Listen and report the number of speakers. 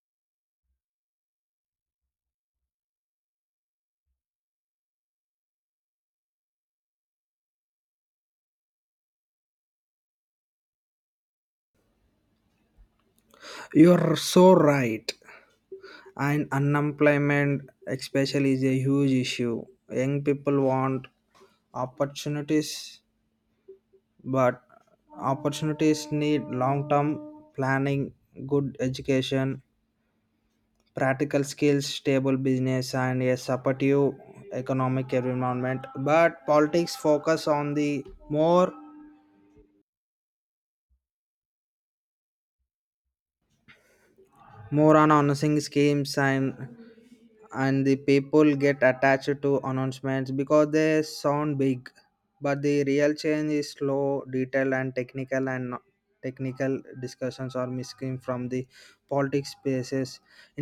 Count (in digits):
1